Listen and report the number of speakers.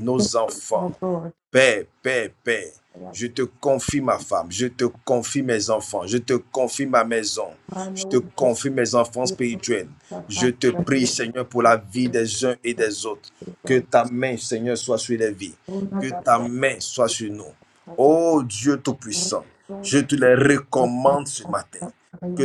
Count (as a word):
two